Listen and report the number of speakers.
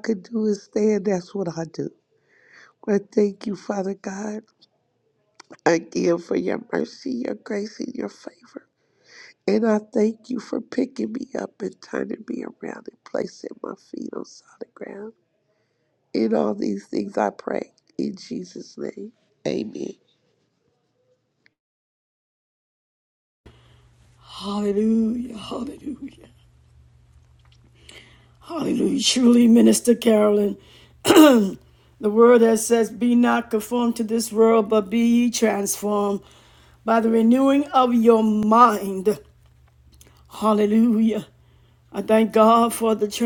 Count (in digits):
2